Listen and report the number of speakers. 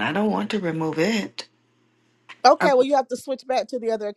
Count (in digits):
2